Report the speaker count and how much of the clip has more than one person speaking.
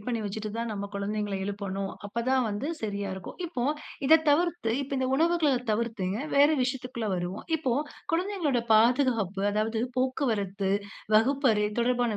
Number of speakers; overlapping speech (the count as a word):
one, no overlap